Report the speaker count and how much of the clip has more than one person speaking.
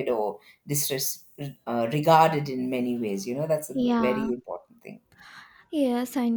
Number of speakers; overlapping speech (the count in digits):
2, about 9%